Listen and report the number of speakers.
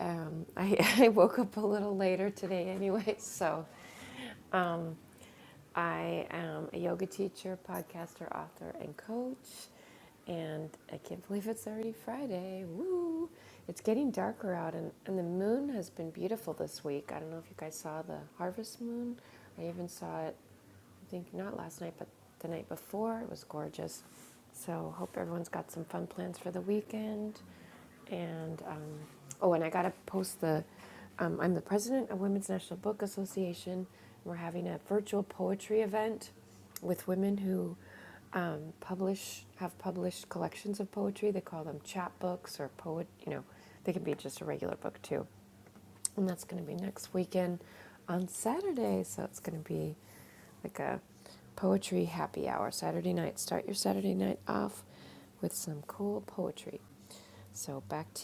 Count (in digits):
1